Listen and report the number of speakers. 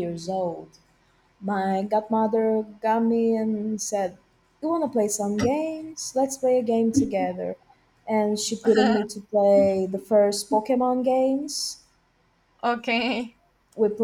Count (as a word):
two